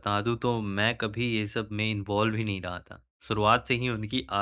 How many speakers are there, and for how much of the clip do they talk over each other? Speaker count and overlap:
1, no overlap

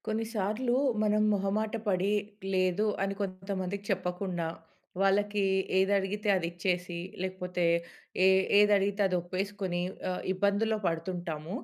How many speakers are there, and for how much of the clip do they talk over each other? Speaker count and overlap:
1, no overlap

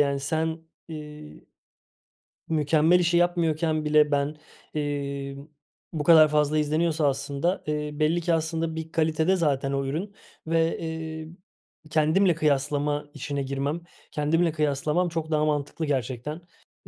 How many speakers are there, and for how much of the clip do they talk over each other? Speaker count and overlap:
1, no overlap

